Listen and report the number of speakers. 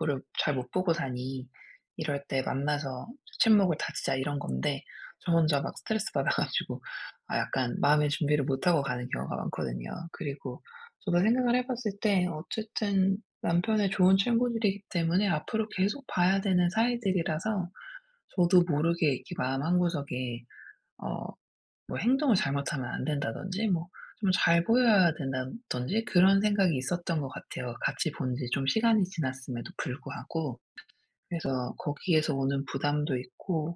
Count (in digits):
1